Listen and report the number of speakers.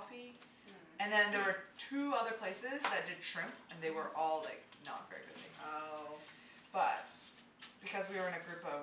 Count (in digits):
2